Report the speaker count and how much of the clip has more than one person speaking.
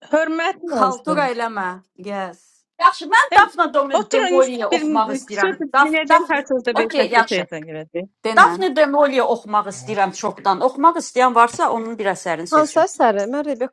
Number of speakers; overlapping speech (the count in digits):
4, about 28%